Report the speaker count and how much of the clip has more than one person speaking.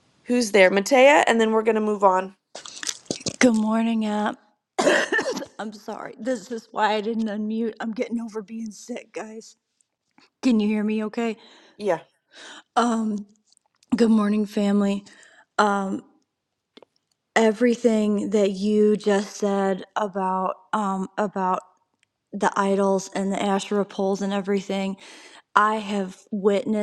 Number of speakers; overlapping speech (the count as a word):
two, no overlap